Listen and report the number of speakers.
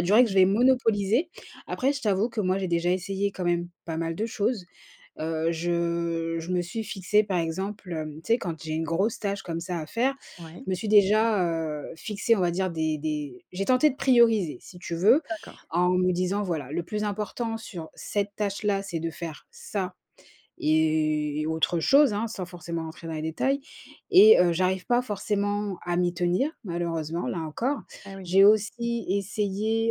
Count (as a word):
two